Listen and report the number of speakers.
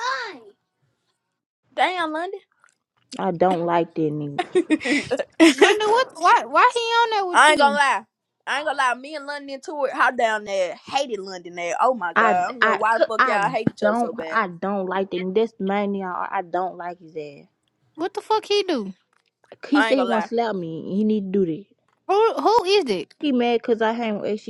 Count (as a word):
three